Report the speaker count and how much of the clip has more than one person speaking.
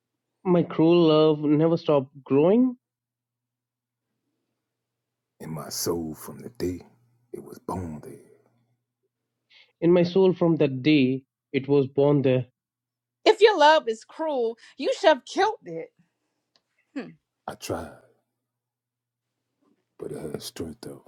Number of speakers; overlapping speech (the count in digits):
3, no overlap